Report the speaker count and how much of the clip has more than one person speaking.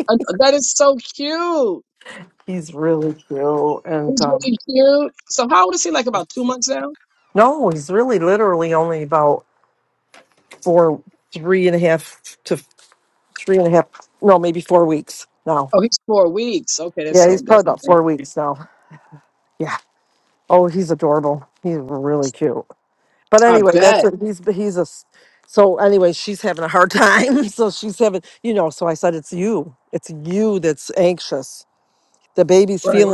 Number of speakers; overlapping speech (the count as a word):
two, about 6%